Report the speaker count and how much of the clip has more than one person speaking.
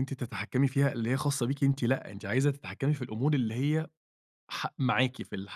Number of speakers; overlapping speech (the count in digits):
1, no overlap